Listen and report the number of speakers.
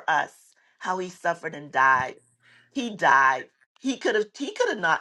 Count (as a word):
one